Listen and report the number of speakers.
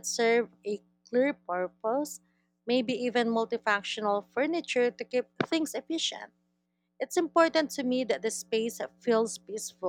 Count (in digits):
1